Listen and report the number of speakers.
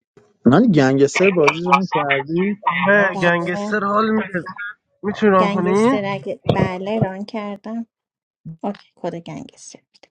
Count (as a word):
three